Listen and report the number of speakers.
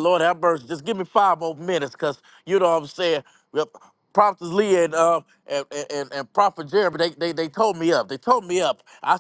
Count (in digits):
1